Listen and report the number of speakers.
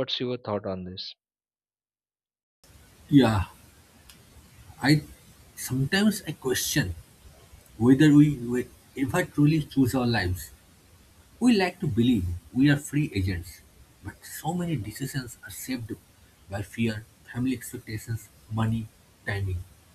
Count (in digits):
2